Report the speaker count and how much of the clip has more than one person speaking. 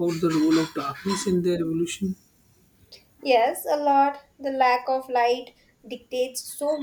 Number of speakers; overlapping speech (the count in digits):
2, no overlap